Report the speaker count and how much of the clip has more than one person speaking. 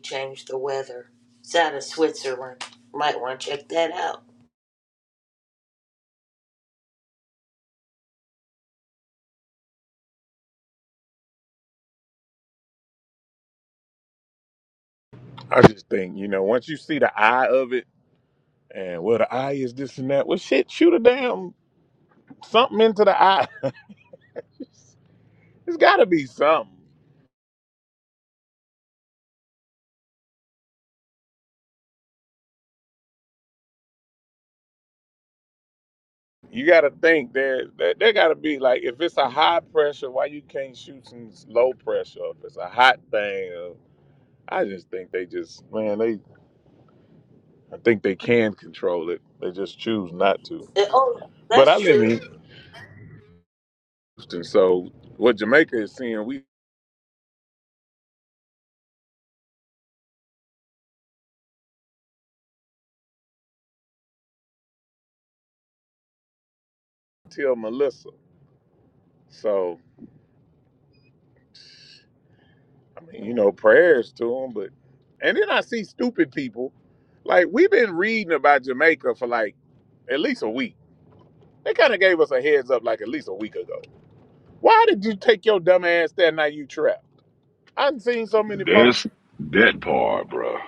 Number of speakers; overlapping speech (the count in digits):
3, about 1%